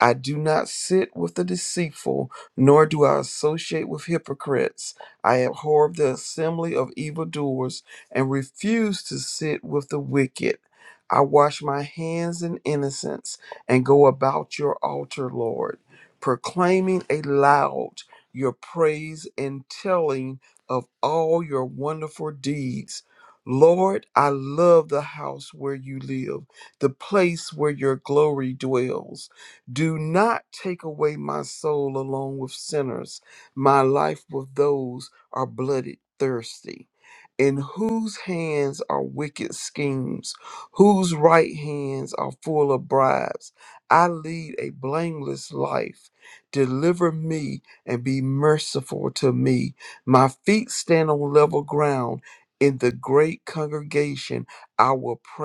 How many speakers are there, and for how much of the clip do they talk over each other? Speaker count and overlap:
1, no overlap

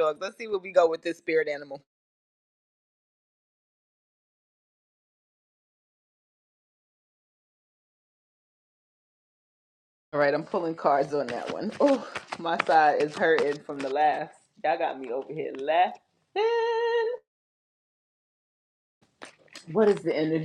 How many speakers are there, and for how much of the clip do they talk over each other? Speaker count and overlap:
1, no overlap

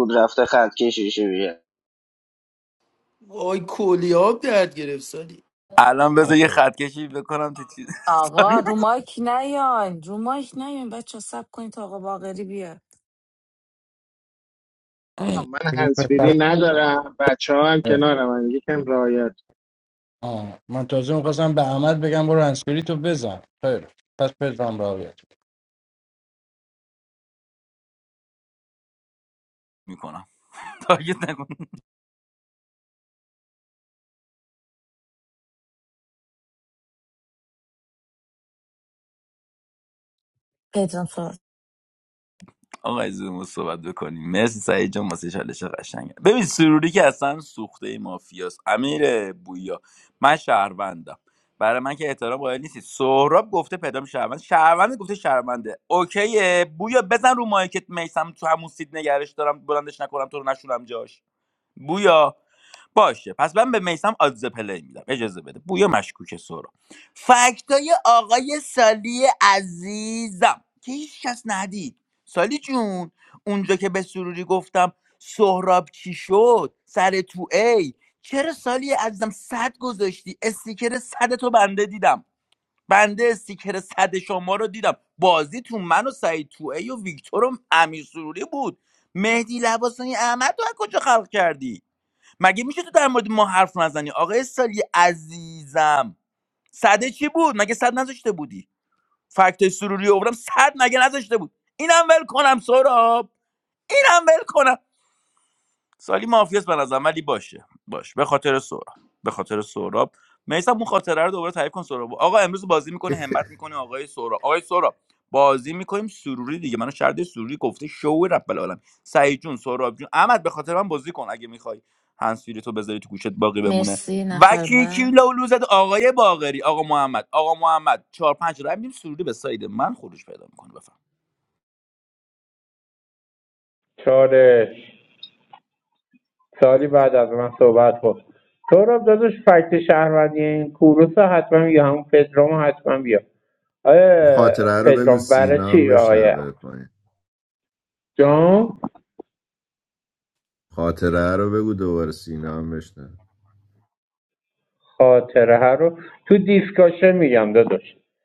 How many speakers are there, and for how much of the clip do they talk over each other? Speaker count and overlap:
8, about 3%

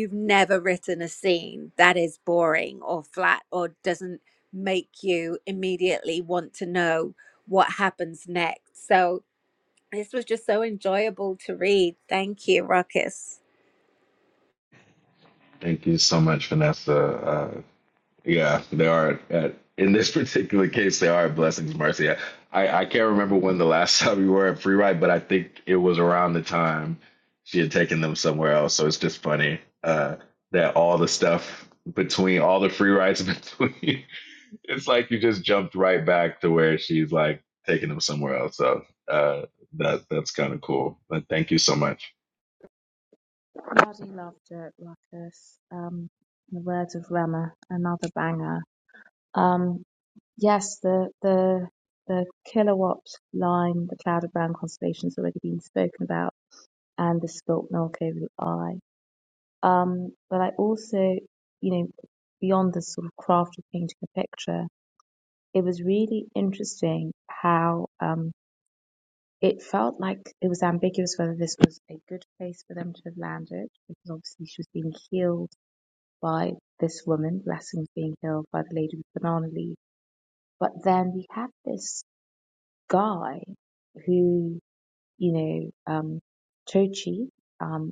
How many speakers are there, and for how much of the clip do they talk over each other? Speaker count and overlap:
3, no overlap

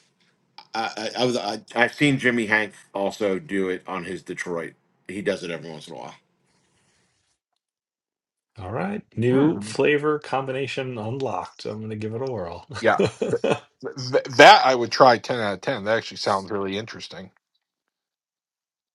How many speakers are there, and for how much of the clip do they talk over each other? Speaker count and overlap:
3, about 1%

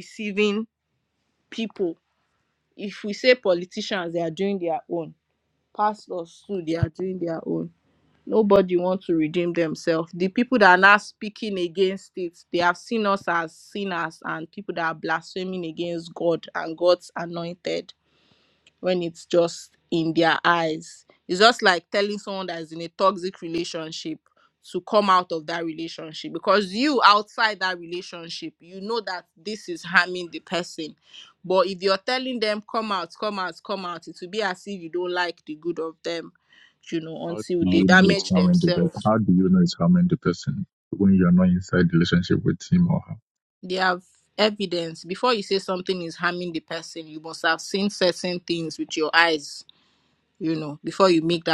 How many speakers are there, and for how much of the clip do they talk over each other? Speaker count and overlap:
2, about 3%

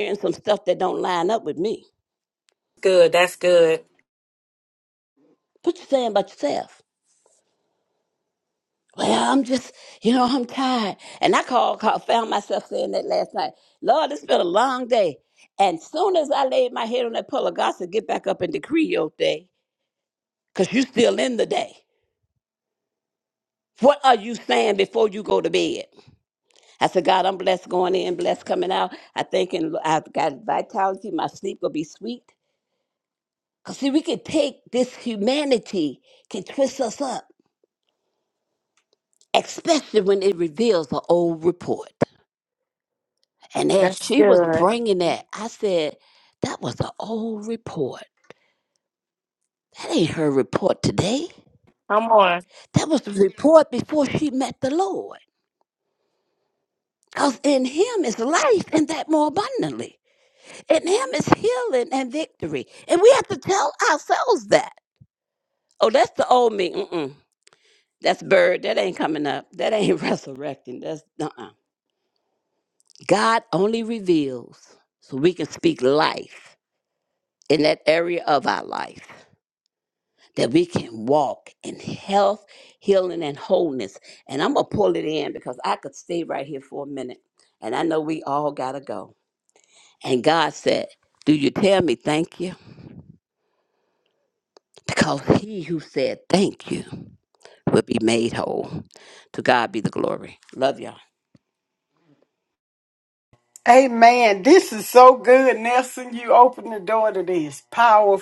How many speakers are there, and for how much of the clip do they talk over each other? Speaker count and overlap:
3, about 1%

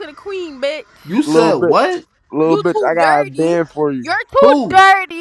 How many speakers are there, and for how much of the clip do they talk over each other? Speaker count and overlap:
3, about 39%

